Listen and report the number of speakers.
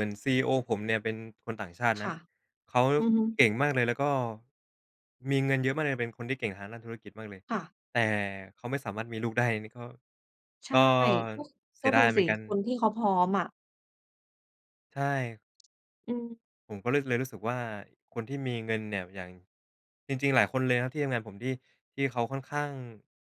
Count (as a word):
two